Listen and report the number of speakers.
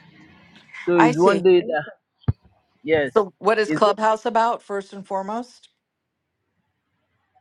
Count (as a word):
two